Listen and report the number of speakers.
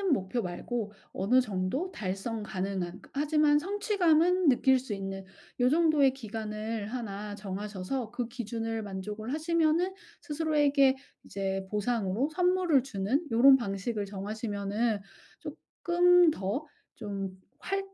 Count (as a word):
one